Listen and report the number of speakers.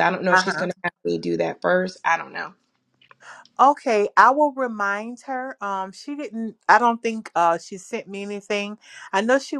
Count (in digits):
2